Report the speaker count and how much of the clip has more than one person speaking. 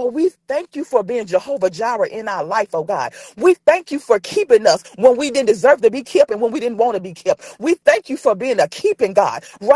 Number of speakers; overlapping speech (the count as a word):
one, no overlap